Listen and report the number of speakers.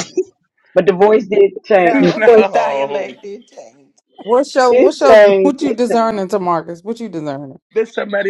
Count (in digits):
4